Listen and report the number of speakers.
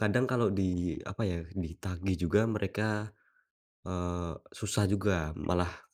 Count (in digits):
1